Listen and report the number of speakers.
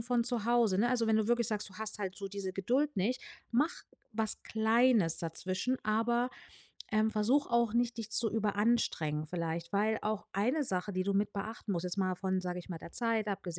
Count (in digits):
1